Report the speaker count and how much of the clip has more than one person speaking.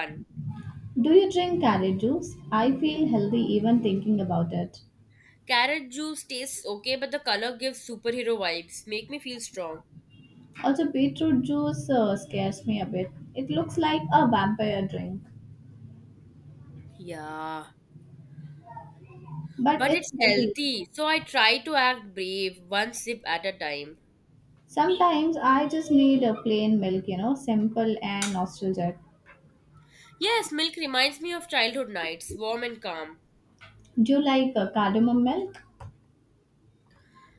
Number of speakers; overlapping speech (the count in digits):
2, about 2%